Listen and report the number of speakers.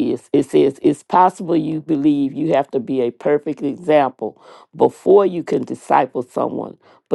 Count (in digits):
1